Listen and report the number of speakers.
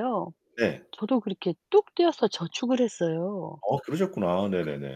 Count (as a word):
two